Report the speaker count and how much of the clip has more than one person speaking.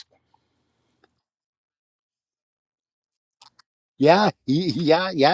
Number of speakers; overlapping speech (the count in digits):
1, no overlap